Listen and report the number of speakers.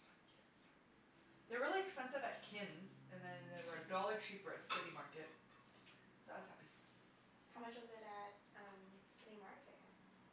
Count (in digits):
2